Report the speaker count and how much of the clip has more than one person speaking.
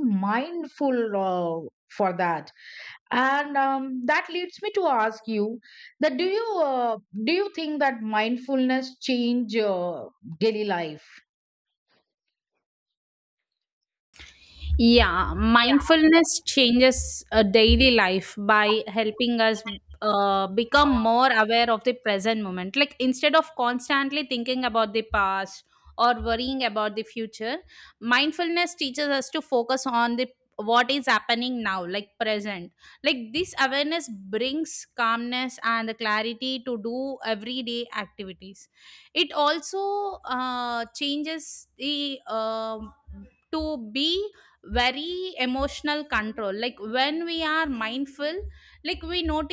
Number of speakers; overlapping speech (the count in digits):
2, no overlap